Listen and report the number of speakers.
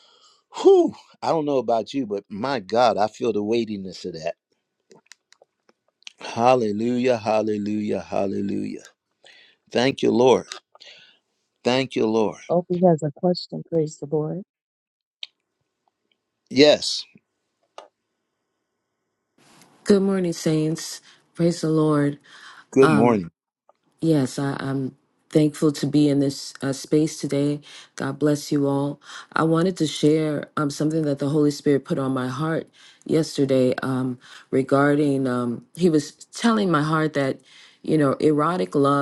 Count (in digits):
3